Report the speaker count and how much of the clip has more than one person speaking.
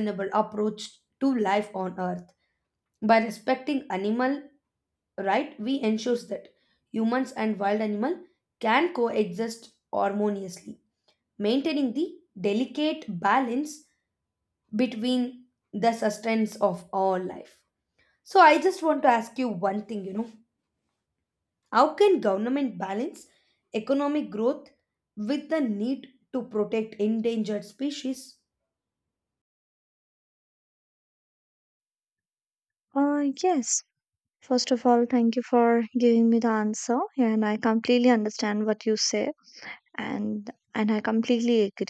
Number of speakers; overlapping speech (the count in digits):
2, no overlap